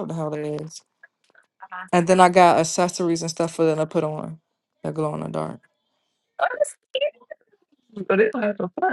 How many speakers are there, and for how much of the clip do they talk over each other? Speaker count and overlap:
two, no overlap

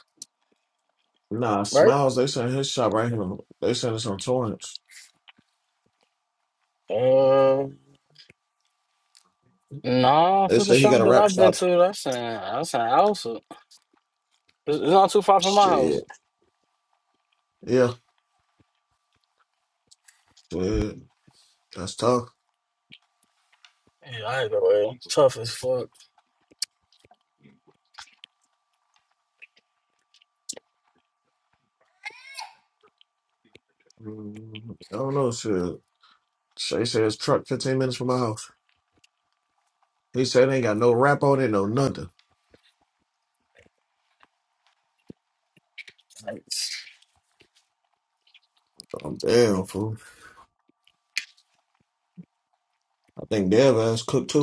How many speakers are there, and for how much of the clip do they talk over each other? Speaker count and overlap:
two, about 3%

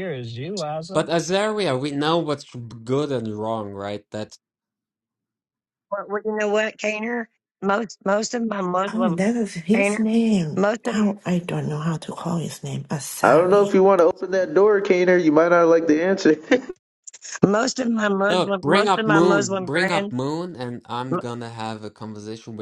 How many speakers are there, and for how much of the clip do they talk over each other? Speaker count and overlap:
five, about 16%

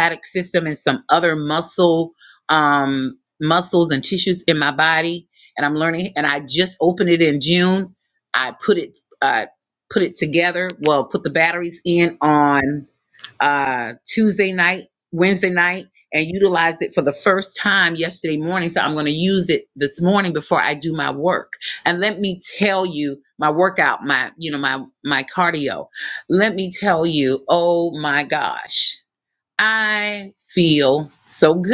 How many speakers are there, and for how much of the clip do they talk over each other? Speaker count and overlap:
one, no overlap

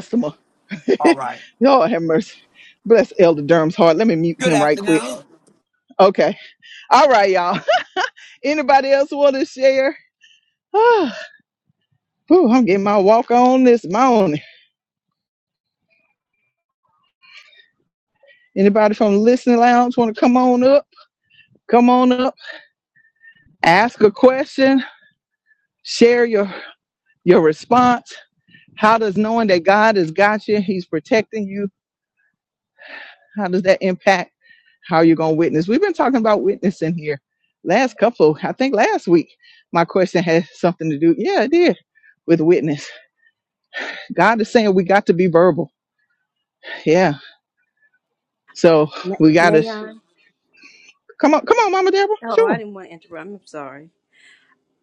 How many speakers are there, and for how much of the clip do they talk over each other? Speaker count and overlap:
three, about 3%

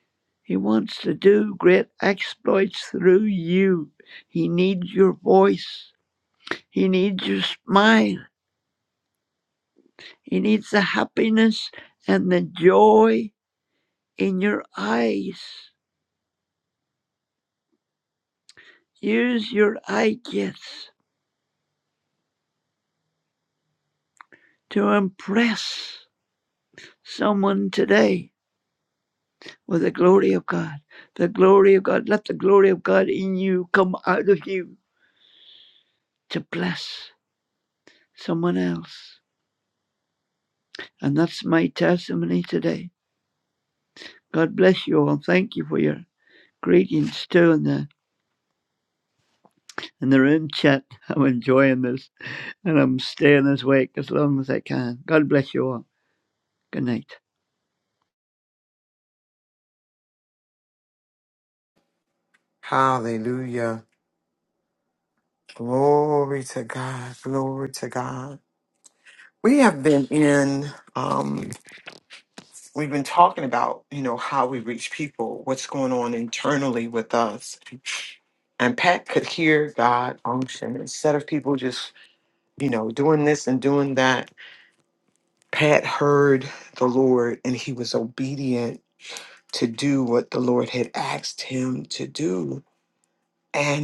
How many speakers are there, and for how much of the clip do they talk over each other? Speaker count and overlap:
two, no overlap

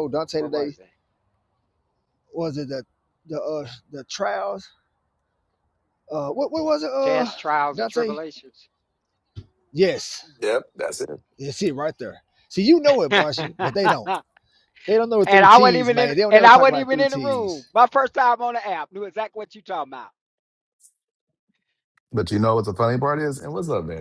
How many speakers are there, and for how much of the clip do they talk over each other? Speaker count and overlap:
three, about 17%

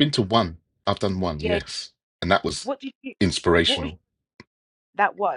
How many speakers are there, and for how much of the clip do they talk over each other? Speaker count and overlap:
two, about 7%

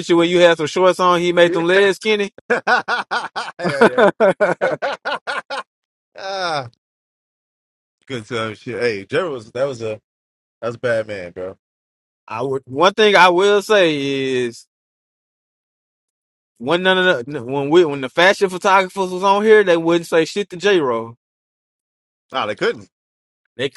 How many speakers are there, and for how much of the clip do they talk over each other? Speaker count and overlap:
two, about 1%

